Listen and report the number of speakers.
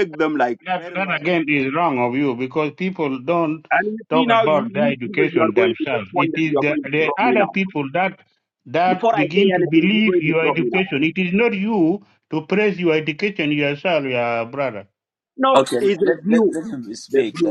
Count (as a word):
three